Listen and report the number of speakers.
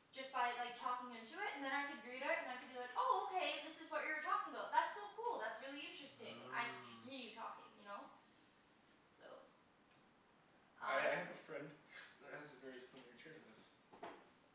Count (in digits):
2